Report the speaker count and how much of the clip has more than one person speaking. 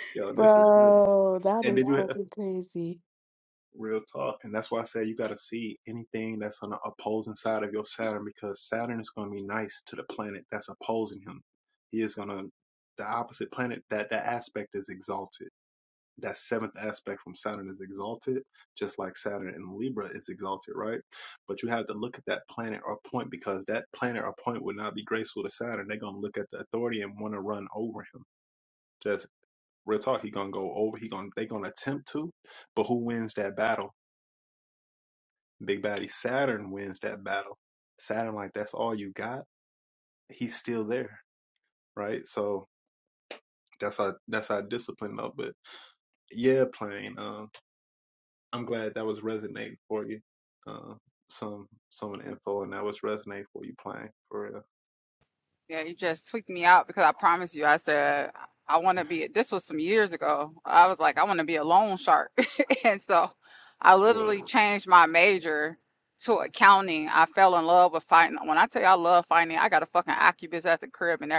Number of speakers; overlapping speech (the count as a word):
three, about 2%